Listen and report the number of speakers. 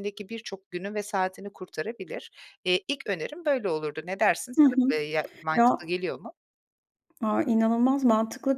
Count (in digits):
2